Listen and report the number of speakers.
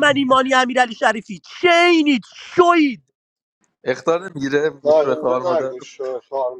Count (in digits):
3